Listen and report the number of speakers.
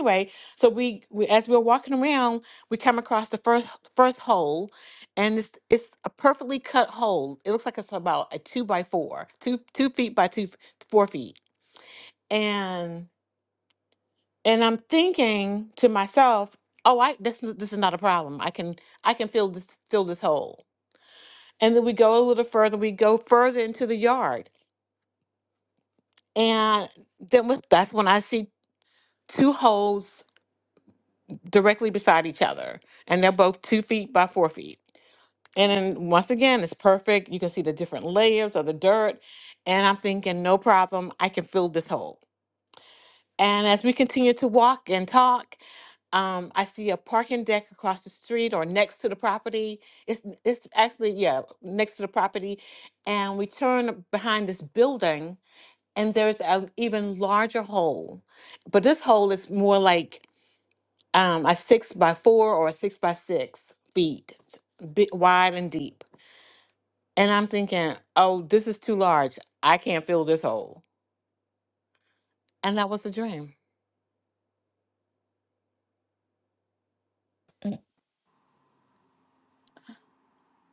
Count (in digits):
1